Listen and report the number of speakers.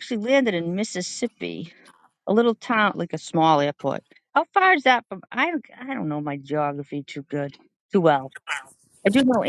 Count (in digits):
1